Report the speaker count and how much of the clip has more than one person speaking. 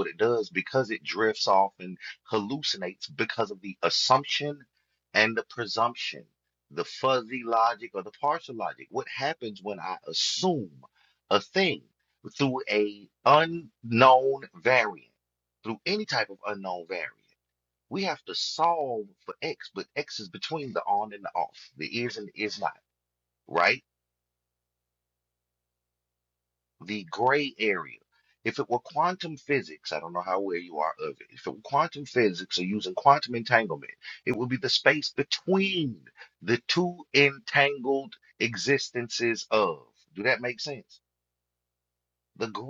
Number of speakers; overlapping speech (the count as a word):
one, no overlap